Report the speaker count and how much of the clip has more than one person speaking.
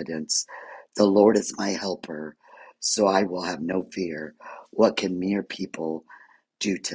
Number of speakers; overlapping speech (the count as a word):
one, no overlap